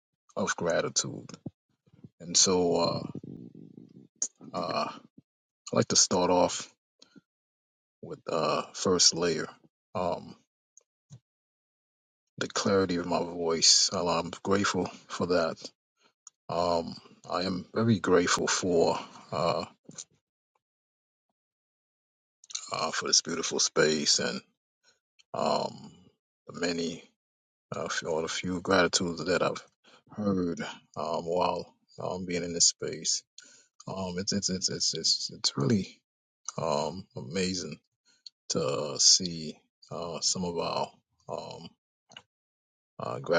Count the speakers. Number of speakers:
one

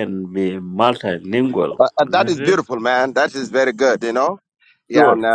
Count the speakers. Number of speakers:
two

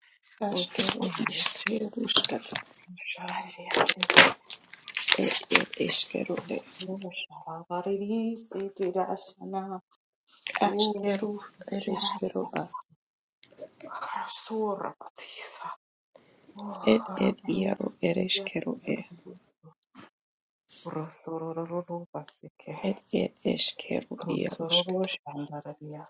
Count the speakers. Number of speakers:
two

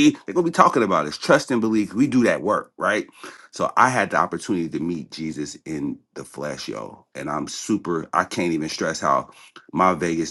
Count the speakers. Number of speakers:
one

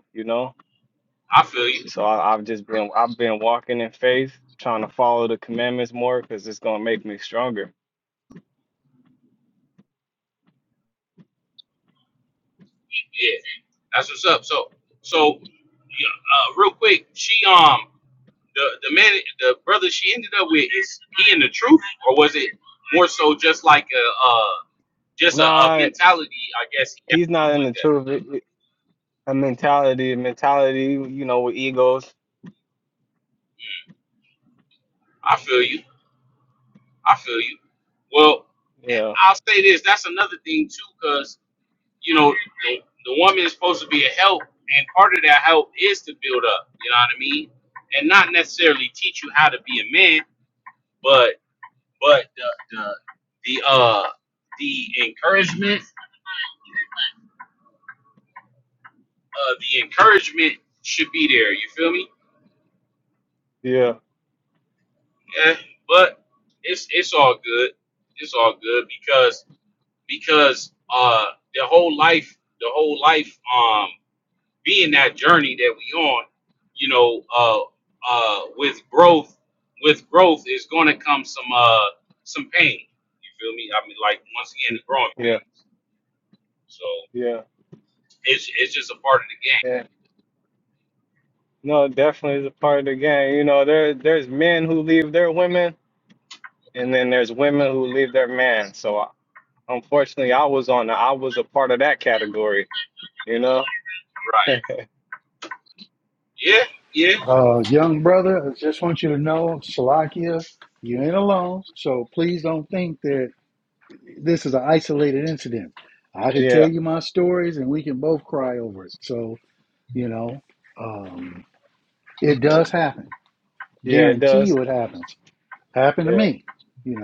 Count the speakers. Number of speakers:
three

